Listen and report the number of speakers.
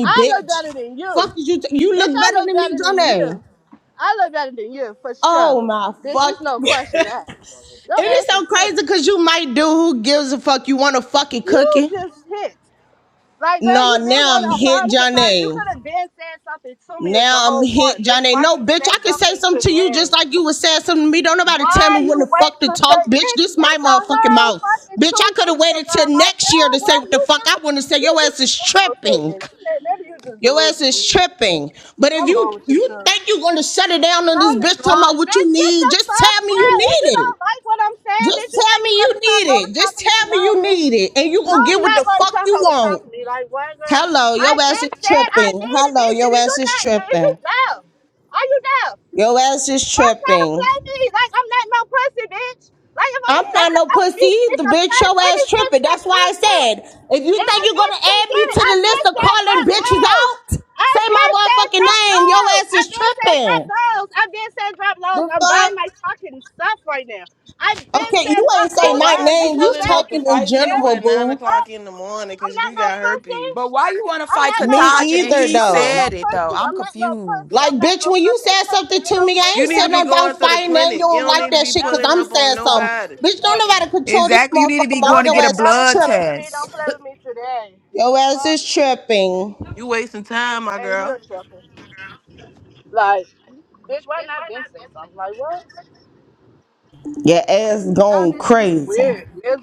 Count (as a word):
four